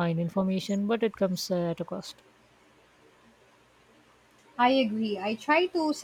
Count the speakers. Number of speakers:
two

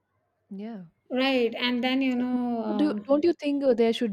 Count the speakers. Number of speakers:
two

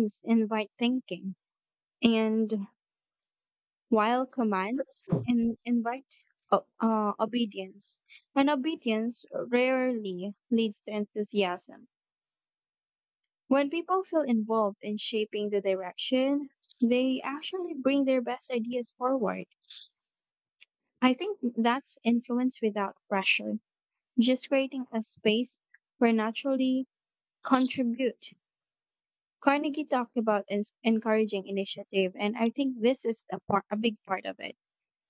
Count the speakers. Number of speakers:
one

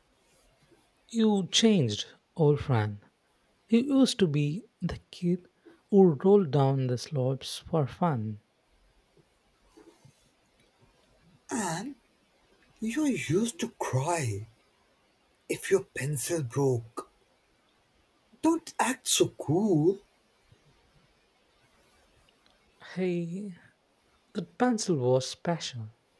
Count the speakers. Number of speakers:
two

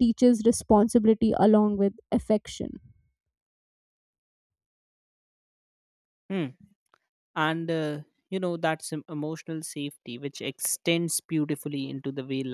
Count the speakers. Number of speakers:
two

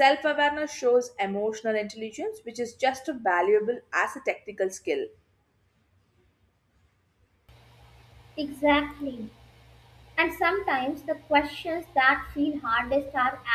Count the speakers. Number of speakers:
two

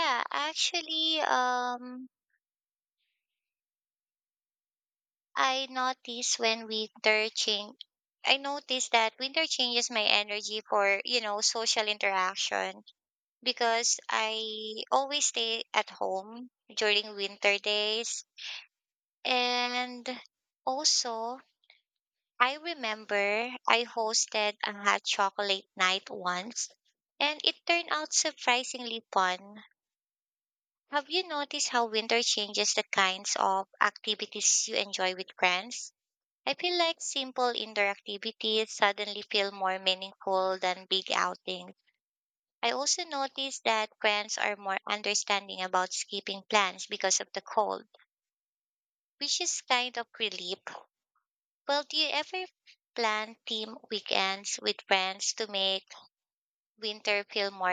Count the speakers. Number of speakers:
one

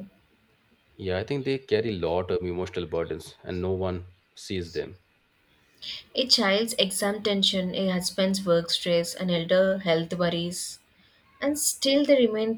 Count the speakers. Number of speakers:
two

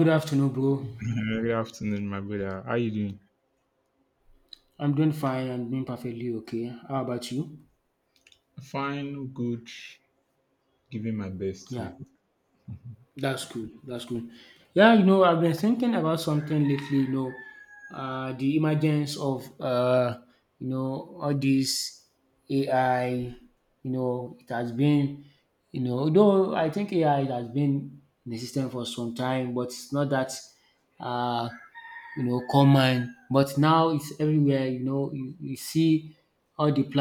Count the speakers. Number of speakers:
two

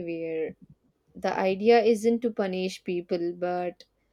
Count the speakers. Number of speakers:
one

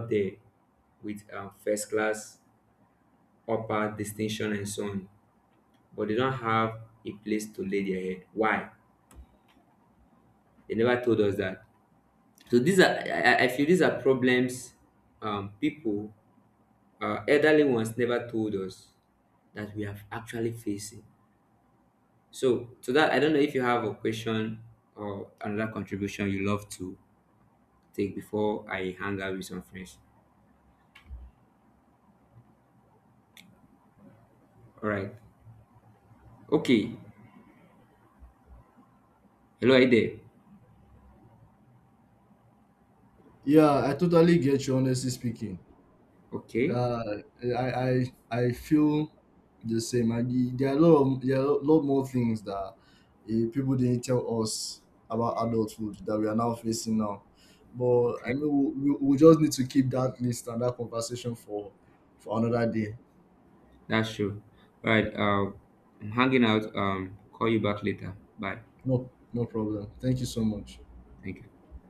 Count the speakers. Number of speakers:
two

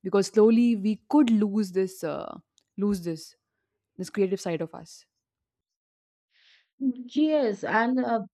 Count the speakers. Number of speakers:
two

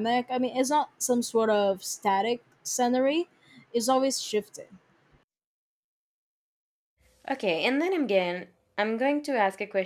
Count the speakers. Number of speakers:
two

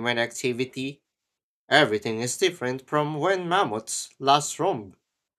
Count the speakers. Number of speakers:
one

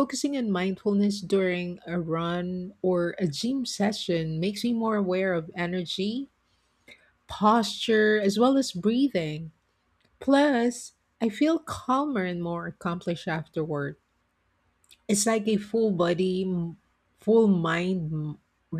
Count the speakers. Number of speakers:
one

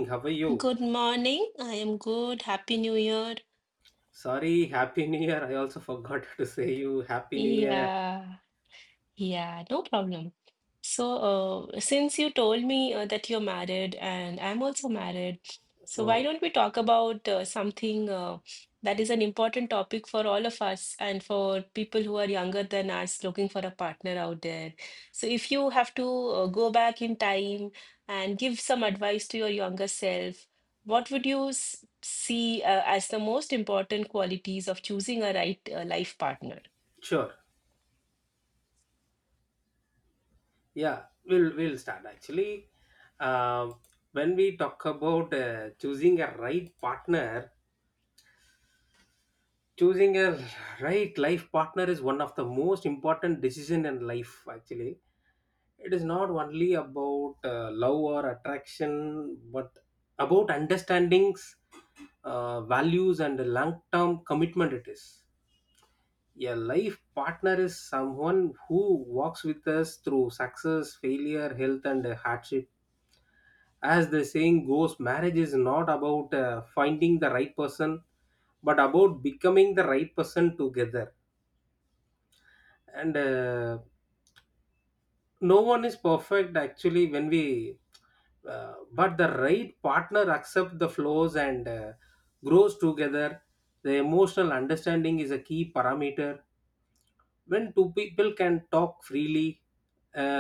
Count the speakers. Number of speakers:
two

